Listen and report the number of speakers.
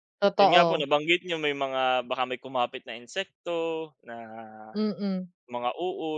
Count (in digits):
2